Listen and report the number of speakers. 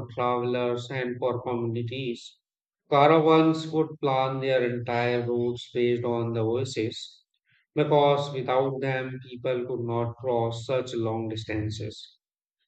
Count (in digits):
1